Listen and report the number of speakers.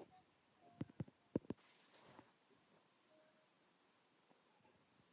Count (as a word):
zero